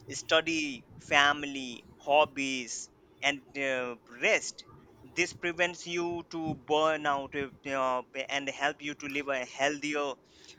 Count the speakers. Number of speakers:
1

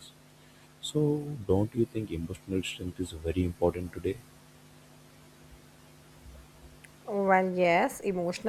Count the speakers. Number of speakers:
2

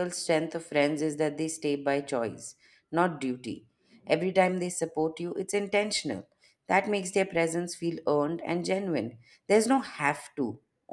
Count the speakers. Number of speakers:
1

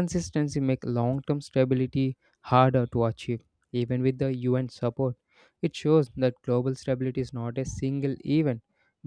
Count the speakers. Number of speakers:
1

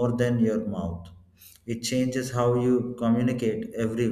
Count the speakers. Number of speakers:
1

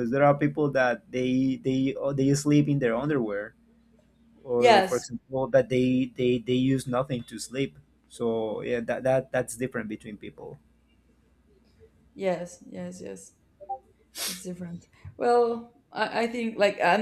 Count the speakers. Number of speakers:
2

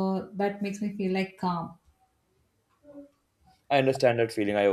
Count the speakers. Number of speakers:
2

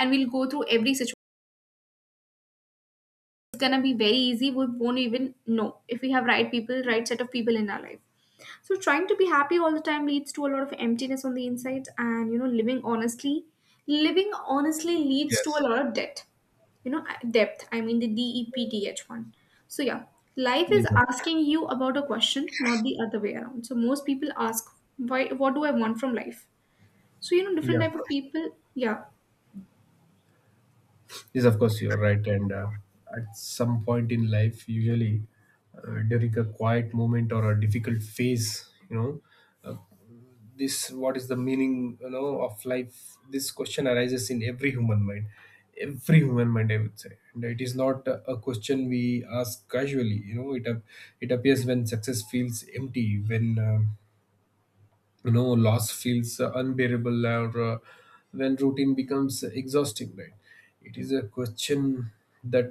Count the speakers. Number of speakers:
2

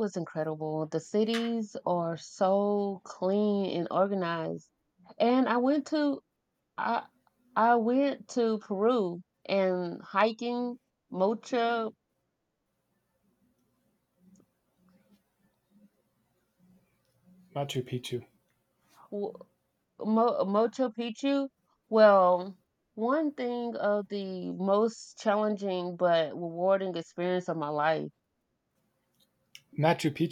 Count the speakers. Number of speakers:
2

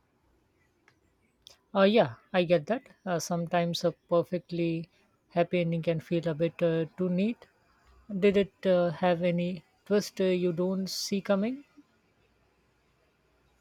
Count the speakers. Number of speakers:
1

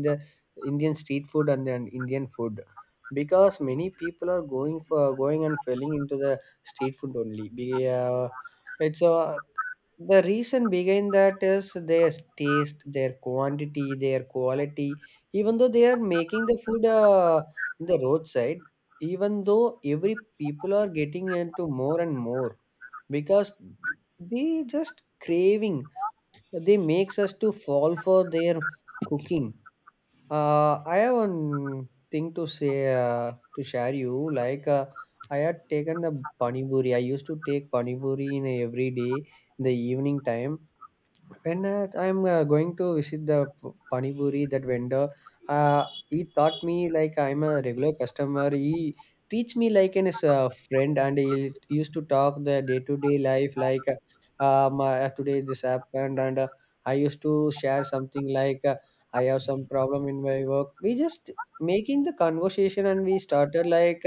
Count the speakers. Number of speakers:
1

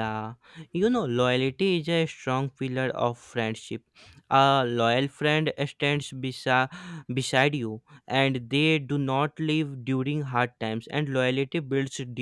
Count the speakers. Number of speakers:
1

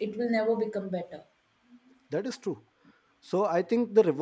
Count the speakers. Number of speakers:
2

